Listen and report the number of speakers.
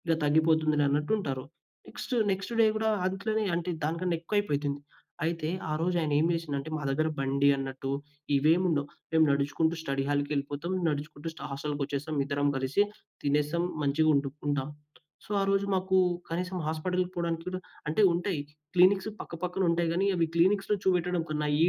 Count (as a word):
one